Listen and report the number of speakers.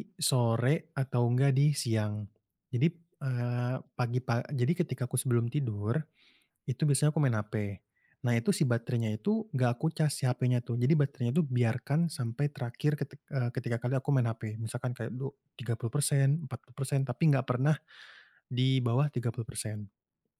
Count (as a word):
one